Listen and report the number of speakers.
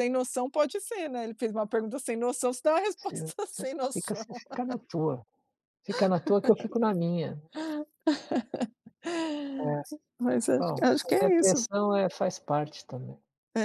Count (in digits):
2